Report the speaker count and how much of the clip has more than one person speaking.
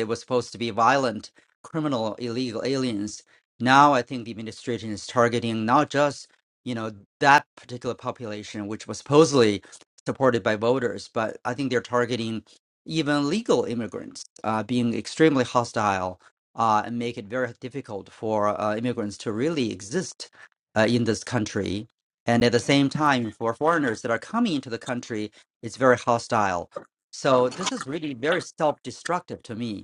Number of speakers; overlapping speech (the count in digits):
1, no overlap